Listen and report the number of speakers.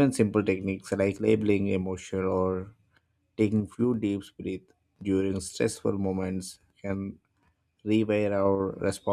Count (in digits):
1